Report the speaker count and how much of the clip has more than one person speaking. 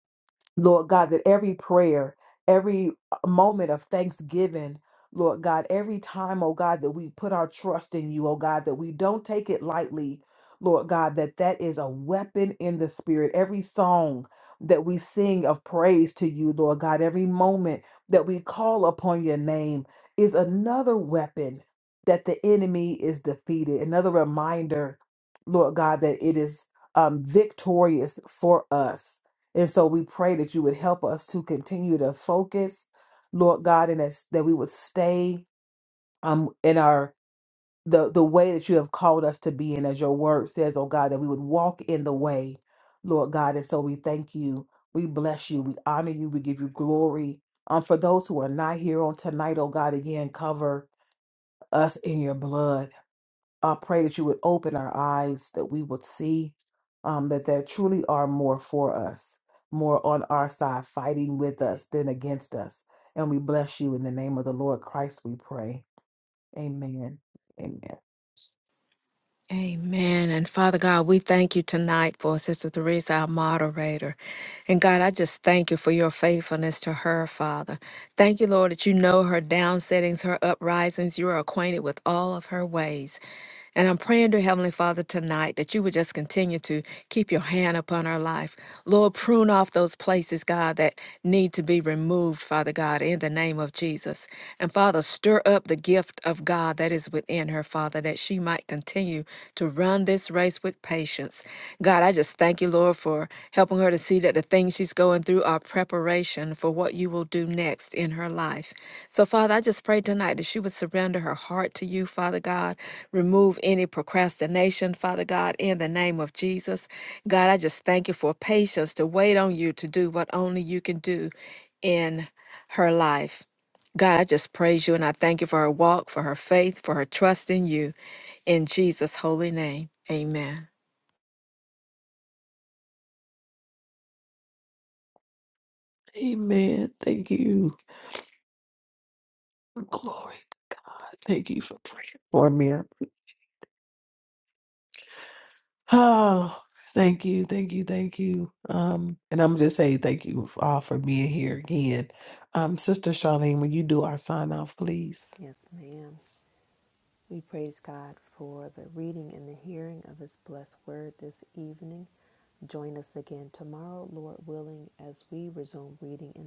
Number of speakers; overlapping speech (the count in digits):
3, no overlap